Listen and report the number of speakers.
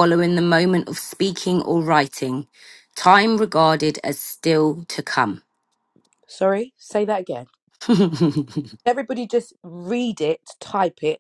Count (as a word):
two